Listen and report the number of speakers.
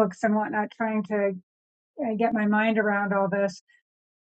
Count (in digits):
1